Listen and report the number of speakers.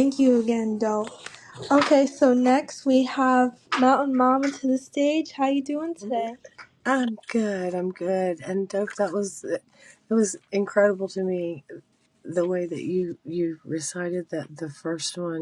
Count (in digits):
2